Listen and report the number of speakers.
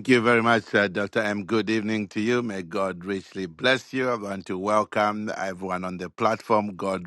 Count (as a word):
one